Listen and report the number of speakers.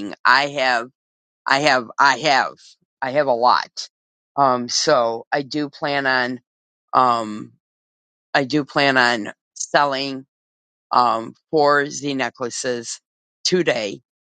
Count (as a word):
one